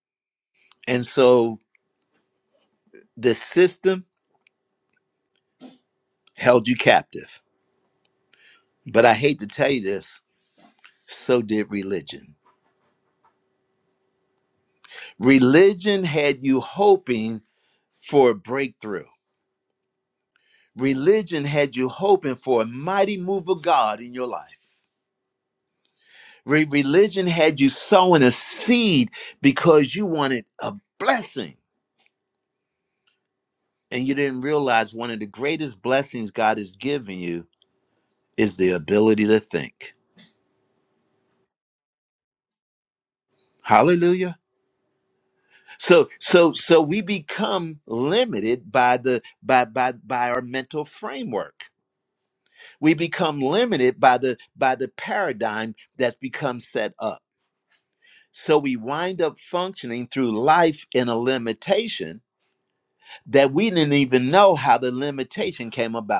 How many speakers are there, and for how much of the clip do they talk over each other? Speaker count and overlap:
one, no overlap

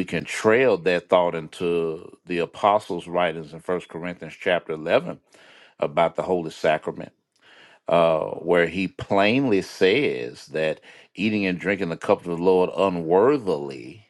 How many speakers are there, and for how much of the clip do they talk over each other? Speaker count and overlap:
one, no overlap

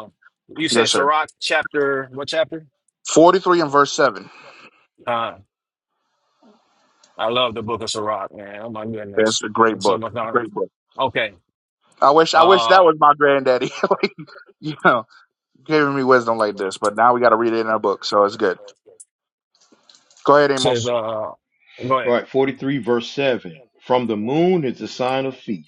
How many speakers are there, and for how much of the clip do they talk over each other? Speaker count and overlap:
three, about 8%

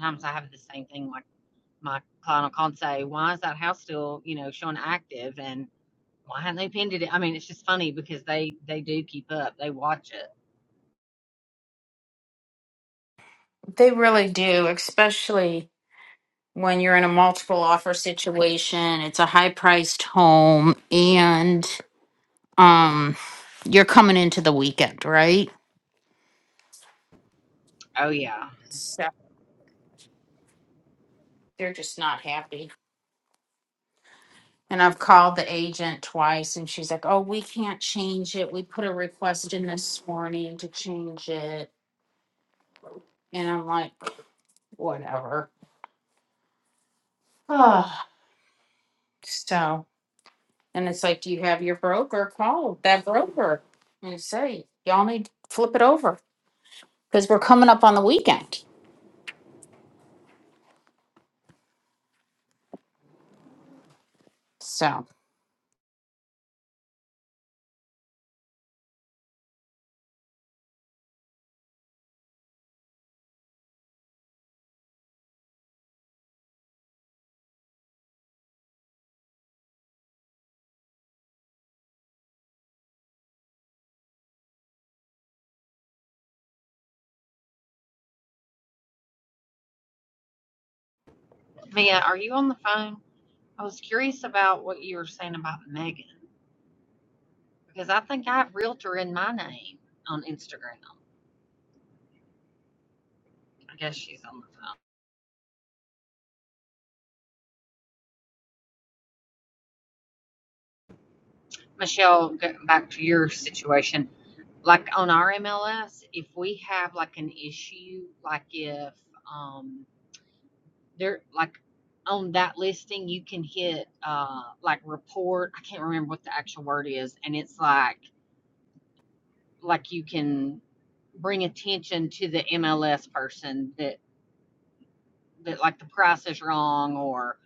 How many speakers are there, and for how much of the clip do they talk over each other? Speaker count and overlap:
two, no overlap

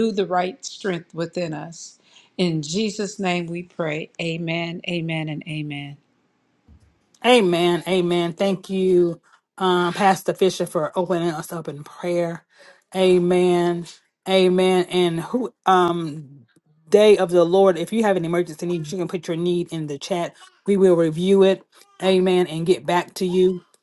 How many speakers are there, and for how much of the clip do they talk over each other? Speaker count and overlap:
two, no overlap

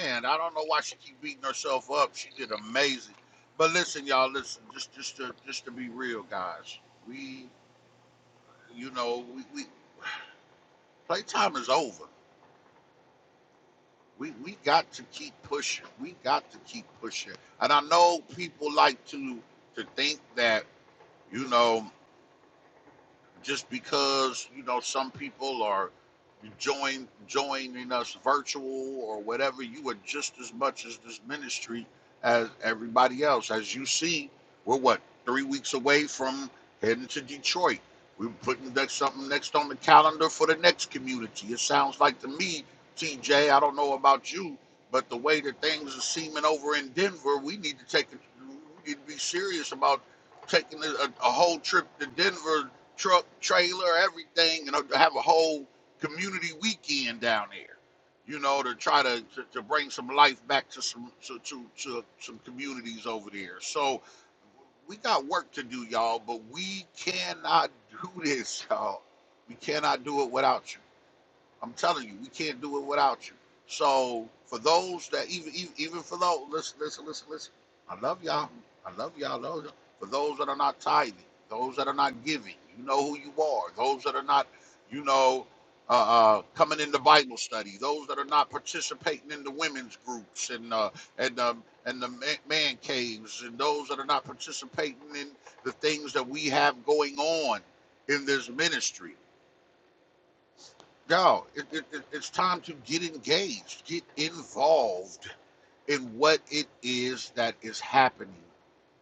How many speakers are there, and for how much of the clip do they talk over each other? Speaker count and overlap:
one, no overlap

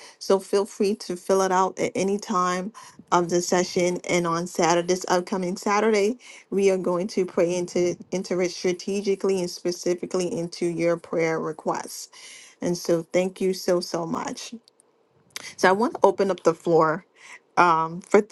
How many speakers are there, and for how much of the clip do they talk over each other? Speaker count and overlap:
one, no overlap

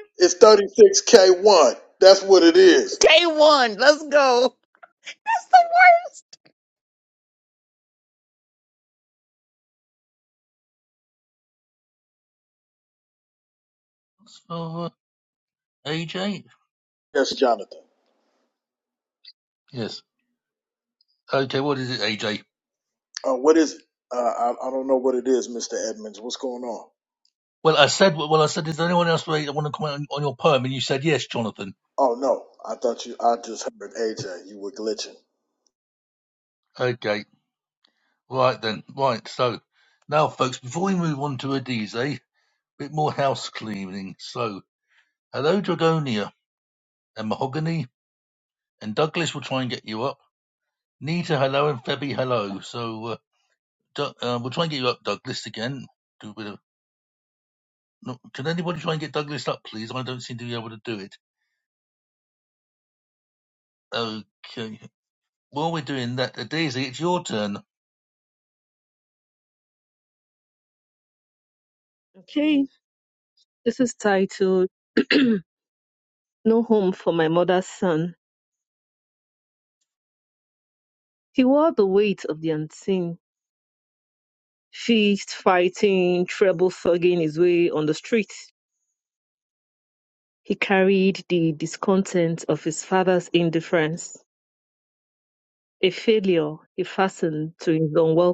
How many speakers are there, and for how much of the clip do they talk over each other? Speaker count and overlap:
four, under 1%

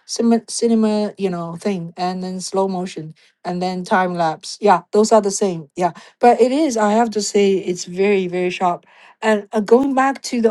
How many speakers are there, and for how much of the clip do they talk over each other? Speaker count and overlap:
one, no overlap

